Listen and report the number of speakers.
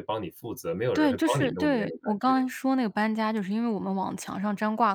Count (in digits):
2